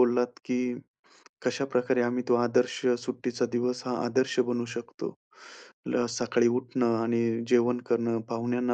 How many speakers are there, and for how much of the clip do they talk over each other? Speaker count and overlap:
1, no overlap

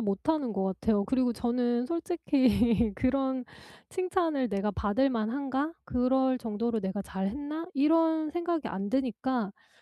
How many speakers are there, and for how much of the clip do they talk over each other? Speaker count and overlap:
1, no overlap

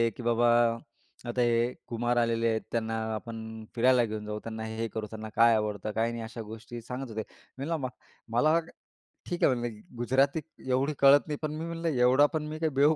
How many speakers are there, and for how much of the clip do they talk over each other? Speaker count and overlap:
1, no overlap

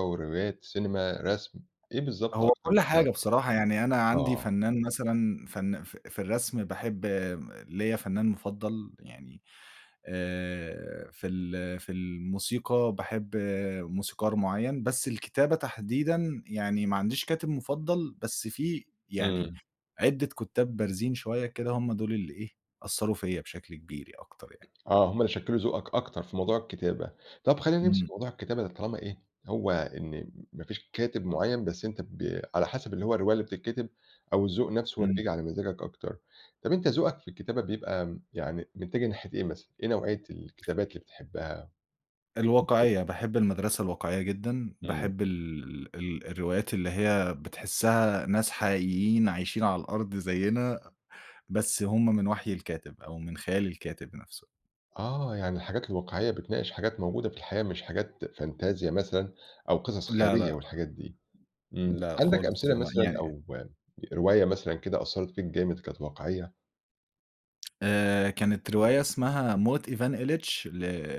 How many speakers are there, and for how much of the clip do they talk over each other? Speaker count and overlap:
2, about 6%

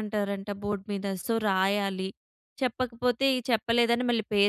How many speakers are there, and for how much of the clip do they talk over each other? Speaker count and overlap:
1, no overlap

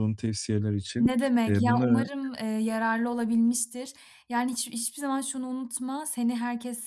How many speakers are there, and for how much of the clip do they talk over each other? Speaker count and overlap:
2, about 10%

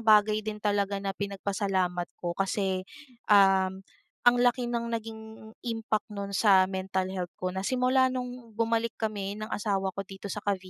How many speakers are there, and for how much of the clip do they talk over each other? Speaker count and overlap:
1, no overlap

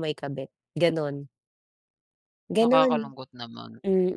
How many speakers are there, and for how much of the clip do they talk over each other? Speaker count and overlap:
2, about 9%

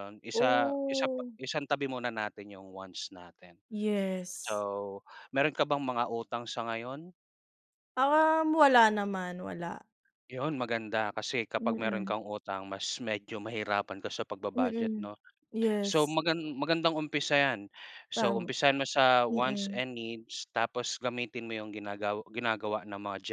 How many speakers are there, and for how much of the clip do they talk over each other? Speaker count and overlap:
2, about 13%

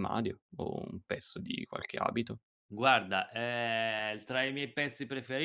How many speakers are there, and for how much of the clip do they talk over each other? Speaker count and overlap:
2, no overlap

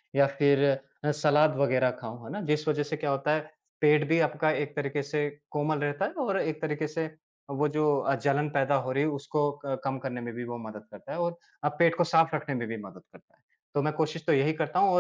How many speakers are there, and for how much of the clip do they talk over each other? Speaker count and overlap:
1, no overlap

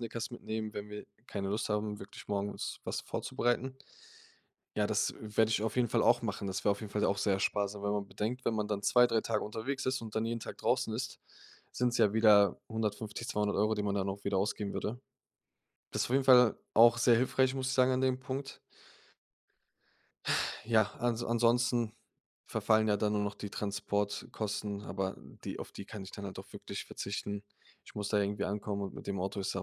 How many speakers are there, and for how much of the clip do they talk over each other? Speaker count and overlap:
1, no overlap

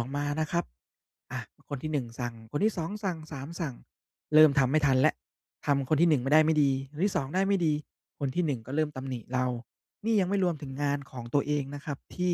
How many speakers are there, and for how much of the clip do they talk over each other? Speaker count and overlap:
1, no overlap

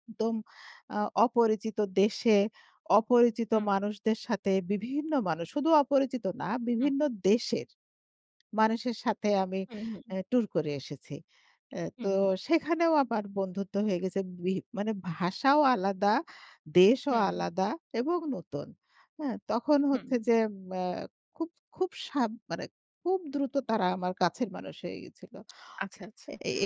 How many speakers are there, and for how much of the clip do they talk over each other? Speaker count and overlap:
2, about 4%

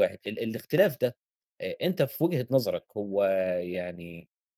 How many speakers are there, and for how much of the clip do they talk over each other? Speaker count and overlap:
1, no overlap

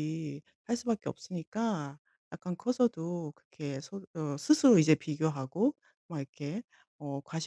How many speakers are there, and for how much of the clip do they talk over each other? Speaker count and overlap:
1, no overlap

